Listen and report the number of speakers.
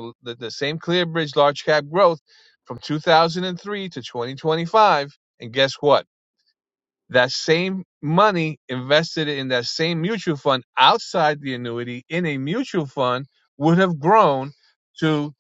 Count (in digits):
1